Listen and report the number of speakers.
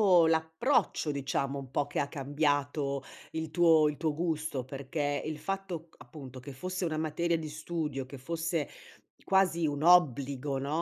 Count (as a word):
one